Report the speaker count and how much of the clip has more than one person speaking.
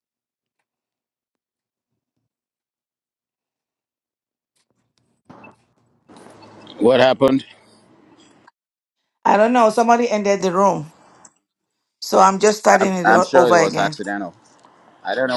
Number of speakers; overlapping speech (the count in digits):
2, about 8%